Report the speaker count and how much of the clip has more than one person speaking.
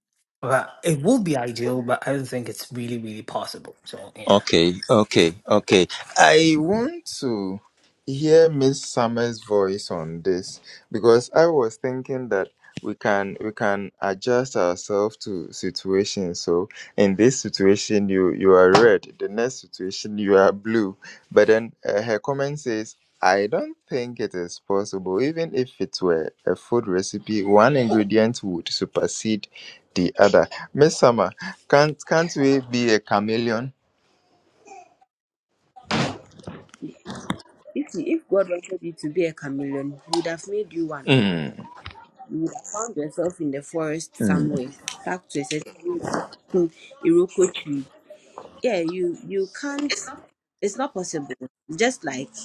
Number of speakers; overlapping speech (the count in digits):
3, about 1%